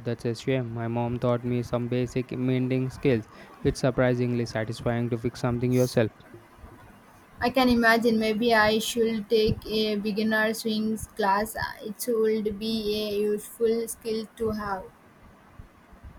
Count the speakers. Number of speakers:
two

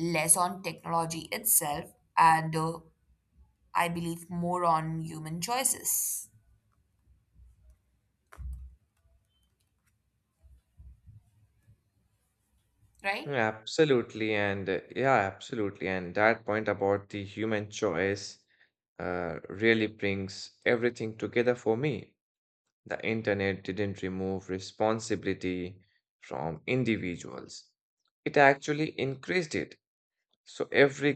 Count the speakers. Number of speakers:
two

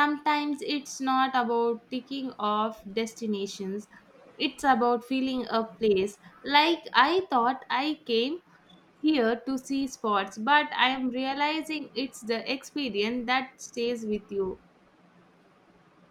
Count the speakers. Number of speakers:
one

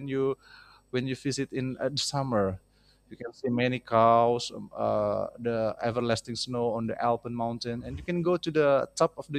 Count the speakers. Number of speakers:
one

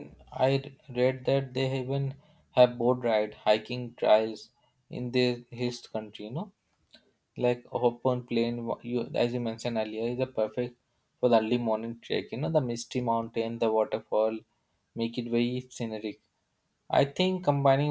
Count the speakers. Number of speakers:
one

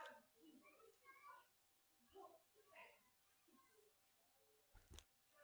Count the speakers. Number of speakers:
zero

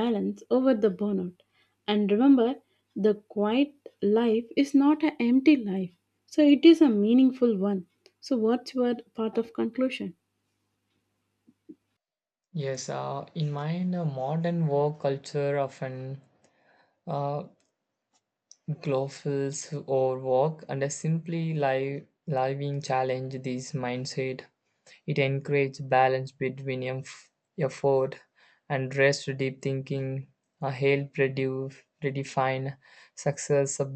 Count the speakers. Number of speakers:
two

